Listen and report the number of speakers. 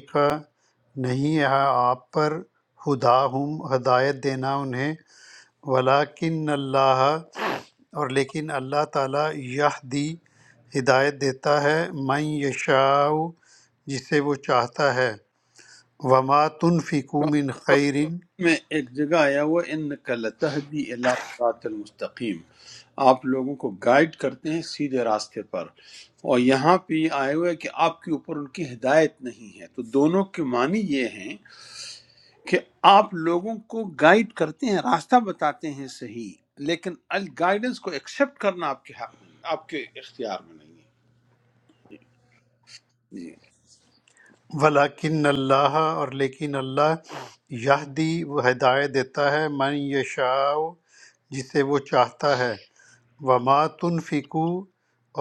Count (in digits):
2